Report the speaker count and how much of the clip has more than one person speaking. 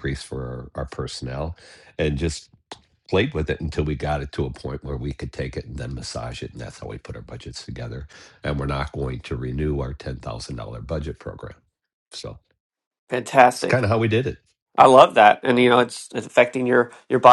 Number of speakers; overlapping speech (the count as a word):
two, about 1%